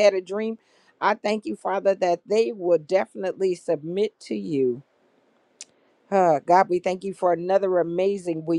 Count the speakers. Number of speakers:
one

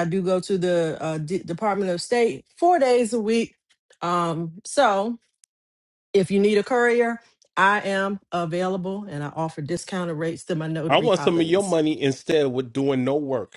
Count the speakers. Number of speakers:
two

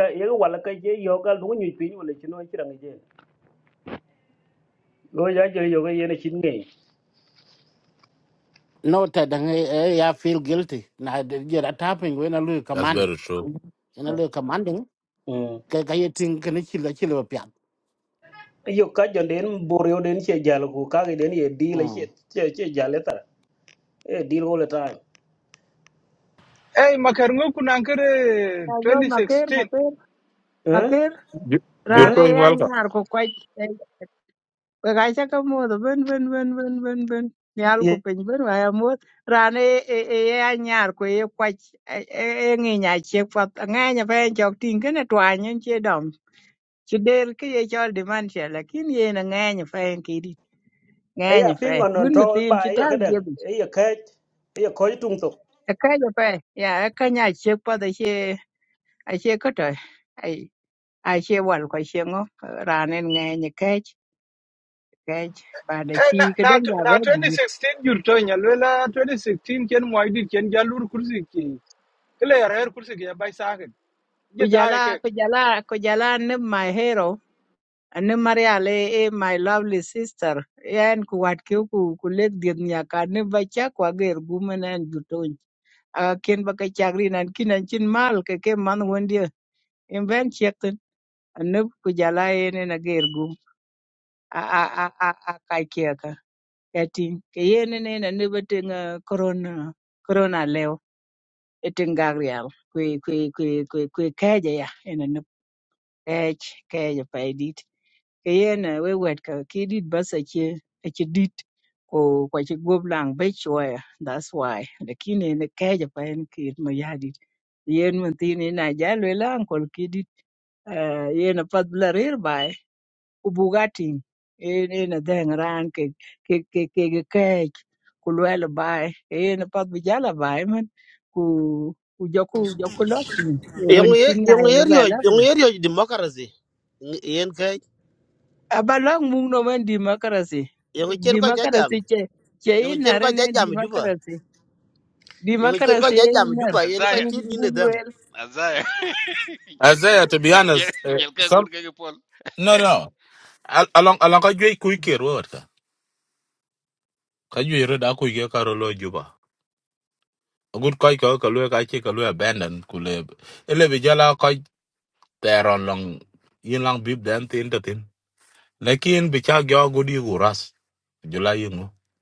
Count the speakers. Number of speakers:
seven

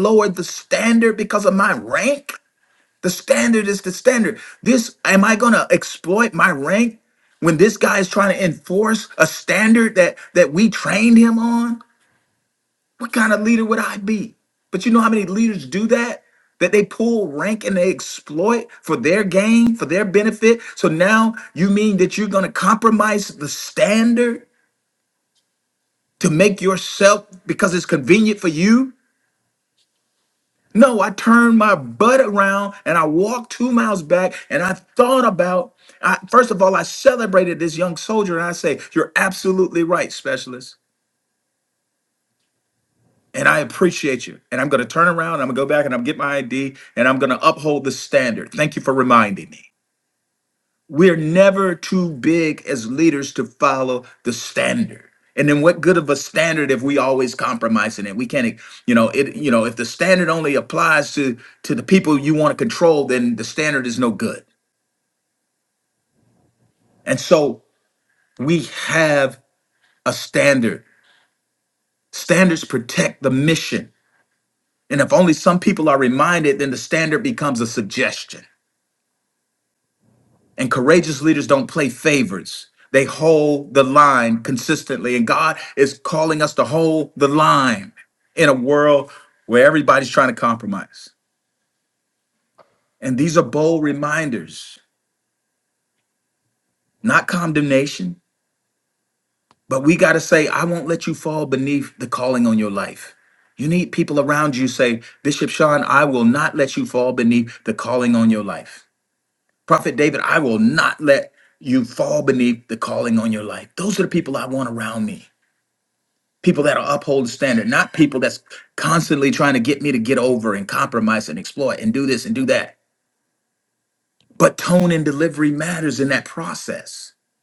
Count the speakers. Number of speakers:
one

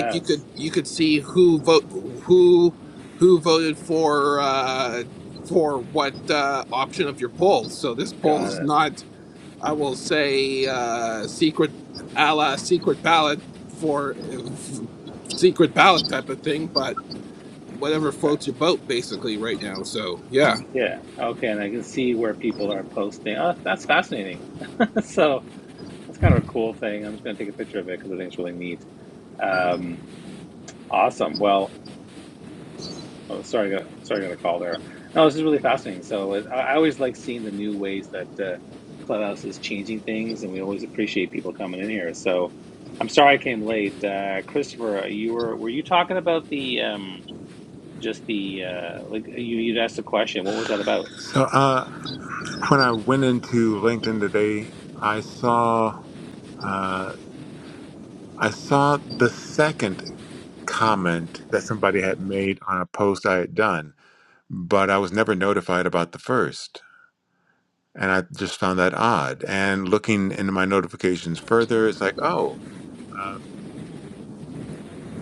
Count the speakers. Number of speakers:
three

